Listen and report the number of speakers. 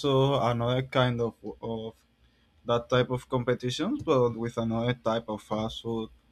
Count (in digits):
1